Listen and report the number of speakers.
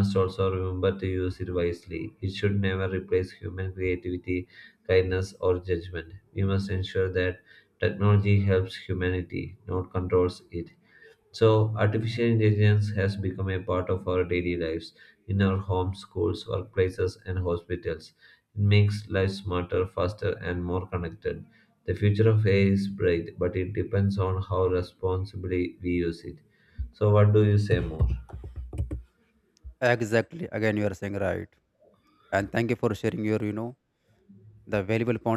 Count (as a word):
two